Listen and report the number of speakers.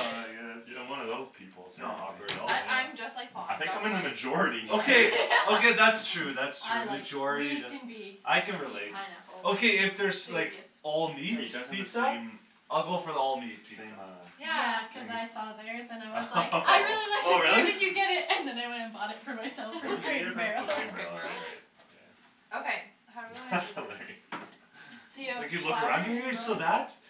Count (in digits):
4